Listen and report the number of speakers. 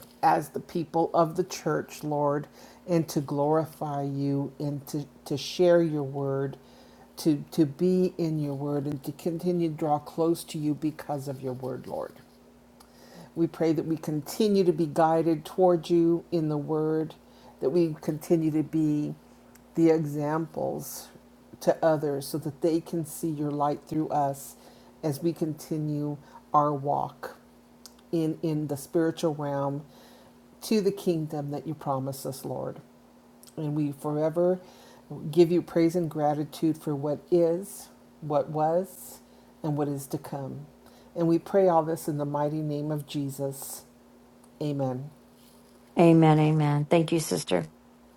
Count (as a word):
two